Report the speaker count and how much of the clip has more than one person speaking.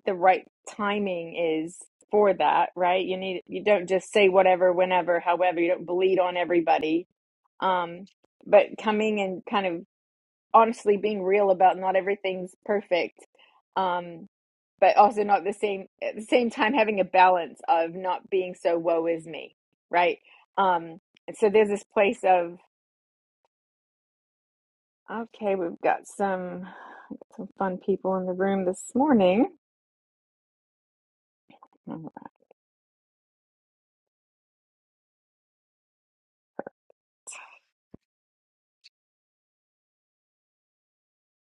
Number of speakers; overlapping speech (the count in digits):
1, no overlap